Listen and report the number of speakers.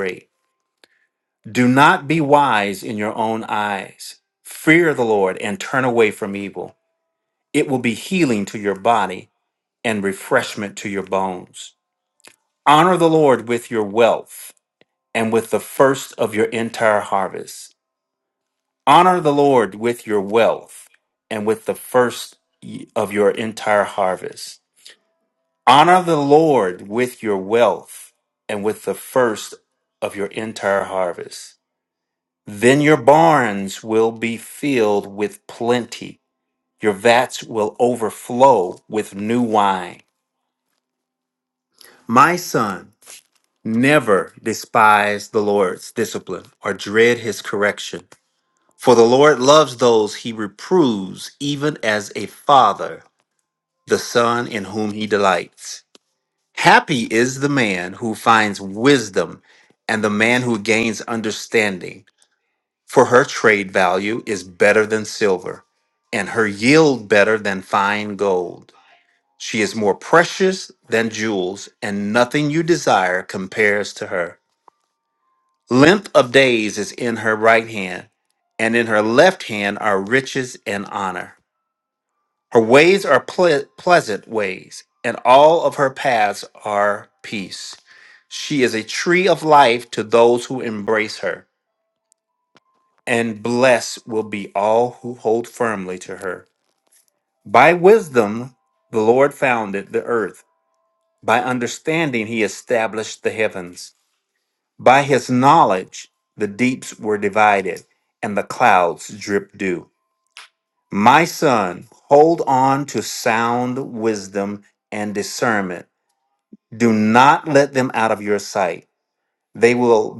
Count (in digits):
1